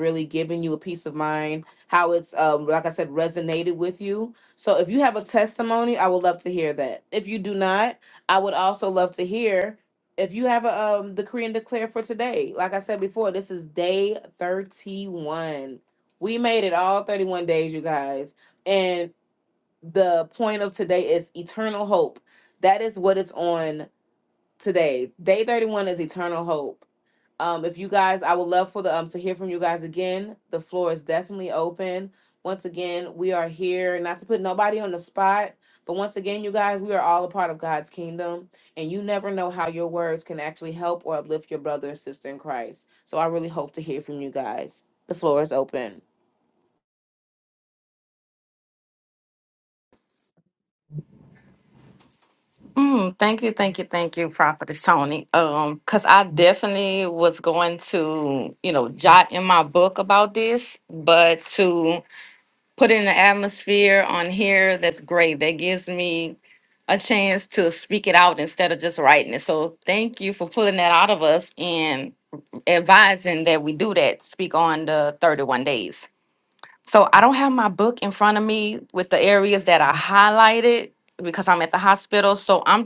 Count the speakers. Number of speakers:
two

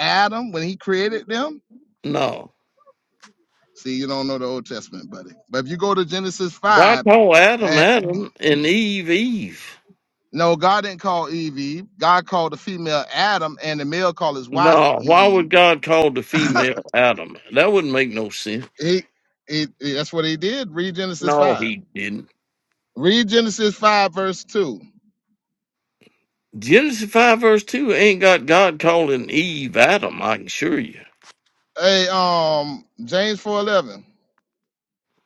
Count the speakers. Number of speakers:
two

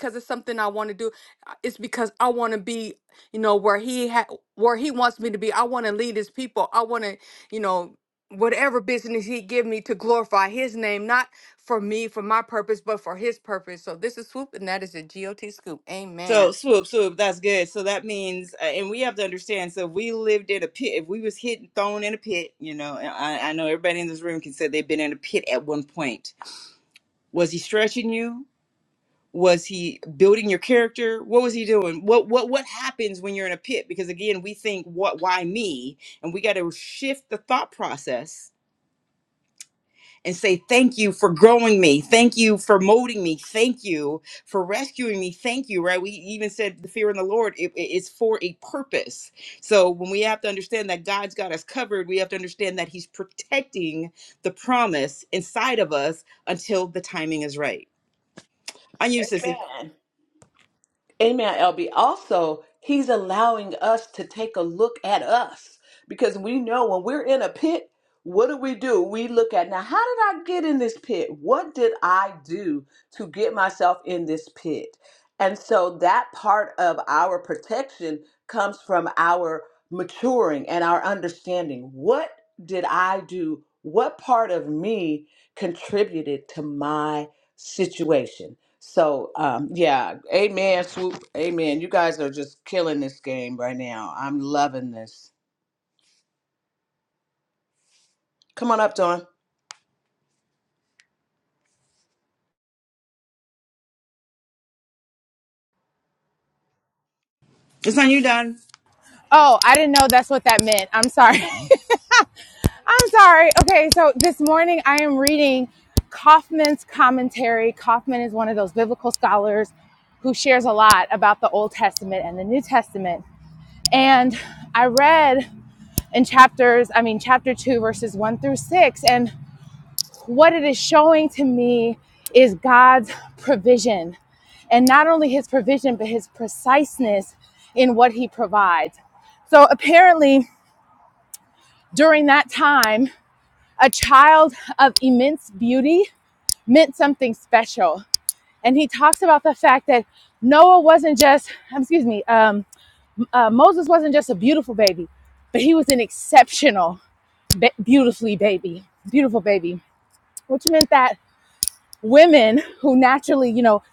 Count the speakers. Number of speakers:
four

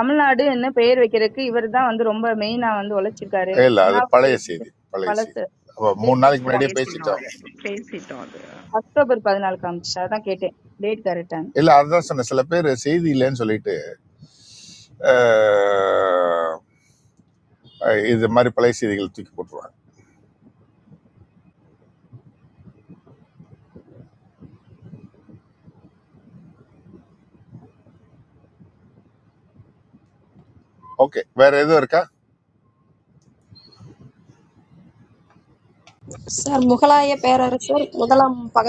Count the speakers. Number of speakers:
four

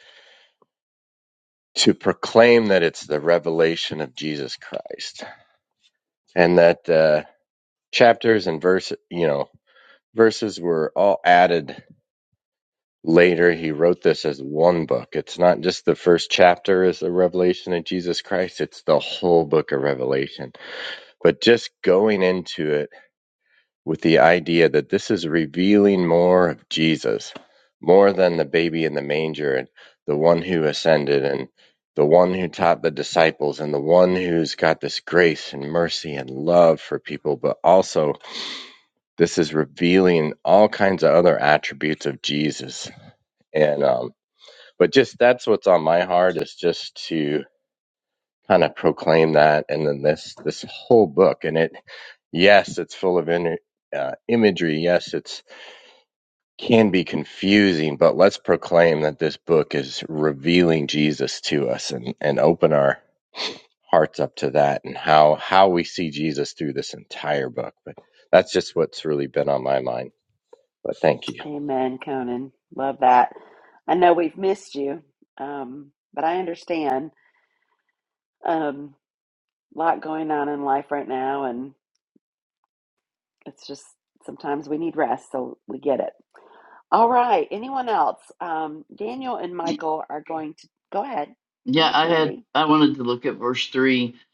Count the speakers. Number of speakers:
three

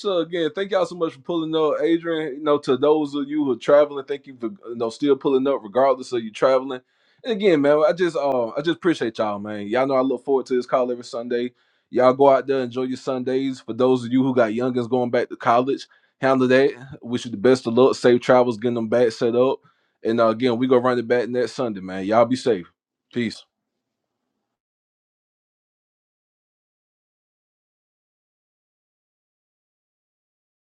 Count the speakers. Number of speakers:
one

